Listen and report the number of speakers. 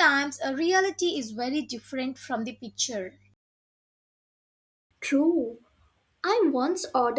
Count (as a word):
two